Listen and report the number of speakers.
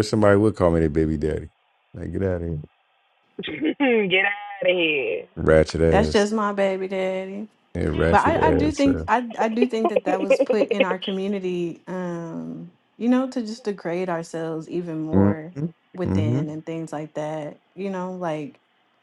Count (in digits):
3